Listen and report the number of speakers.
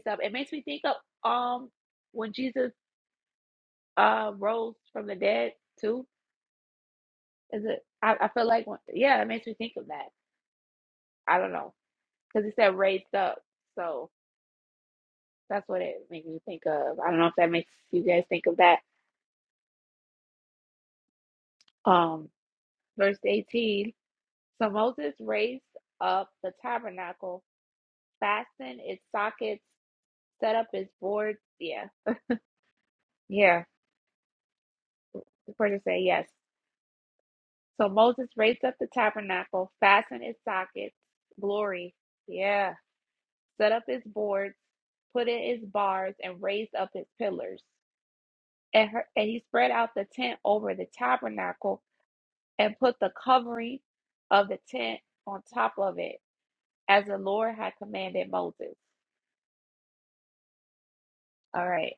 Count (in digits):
1